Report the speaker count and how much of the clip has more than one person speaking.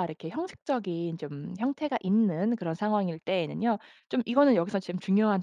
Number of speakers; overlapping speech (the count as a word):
one, no overlap